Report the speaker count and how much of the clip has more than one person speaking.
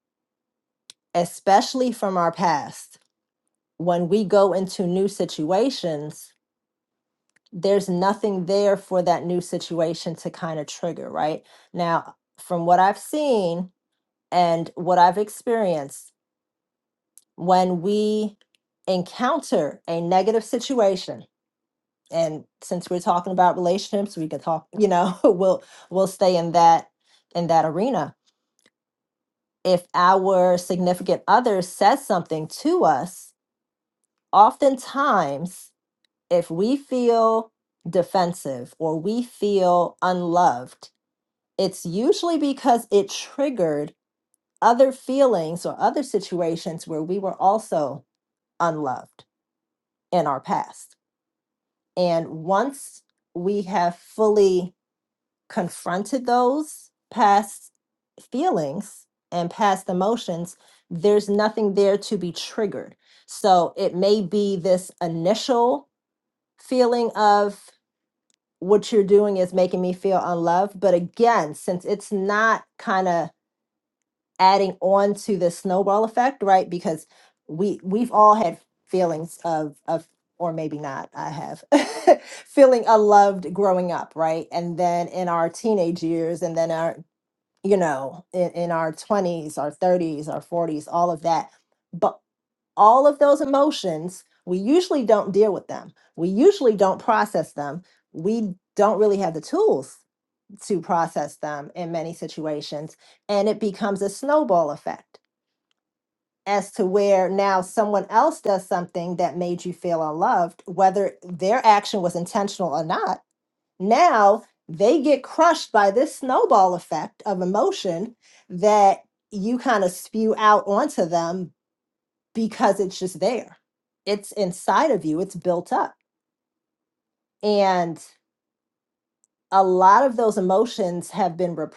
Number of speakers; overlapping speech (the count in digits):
1, no overlap